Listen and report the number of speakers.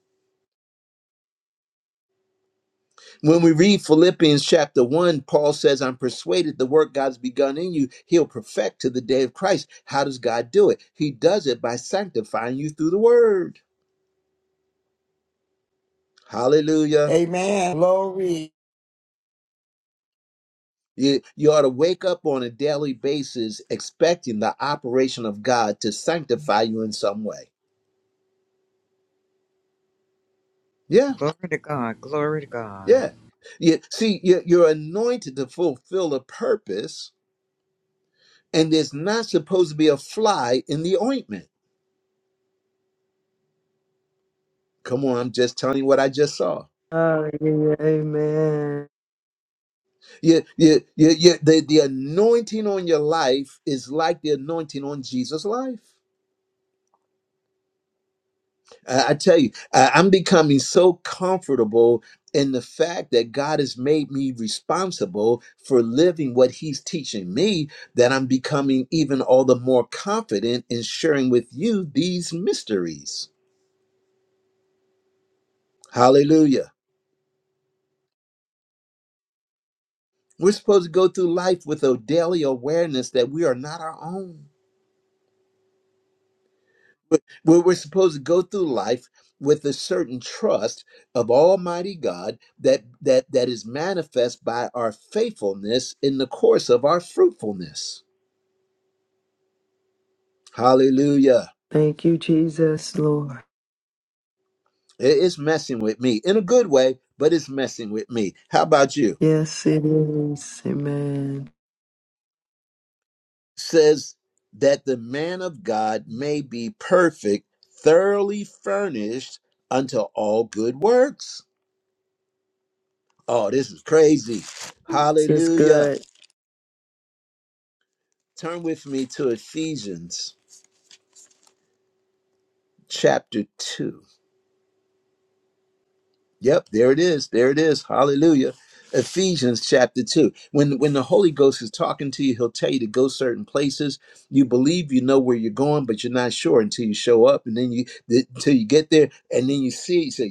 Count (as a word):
four